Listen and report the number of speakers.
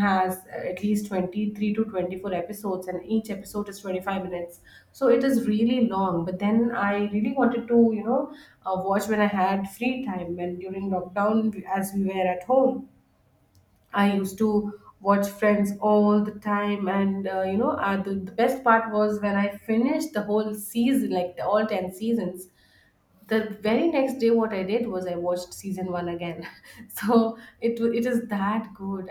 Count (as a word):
one